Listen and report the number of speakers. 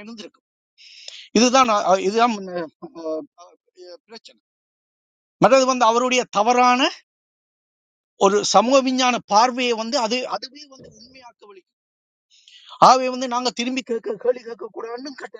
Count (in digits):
1